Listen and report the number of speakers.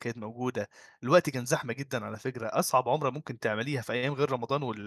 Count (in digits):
1